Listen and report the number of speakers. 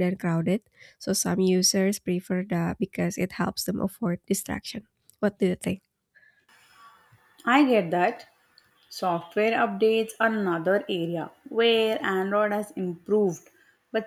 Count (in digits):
2